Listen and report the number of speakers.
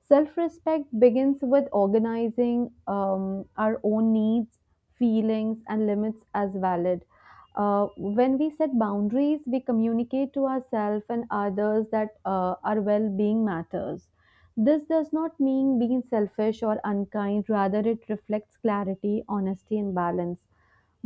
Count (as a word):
one